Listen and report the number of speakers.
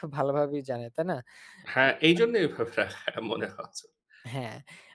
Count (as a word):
two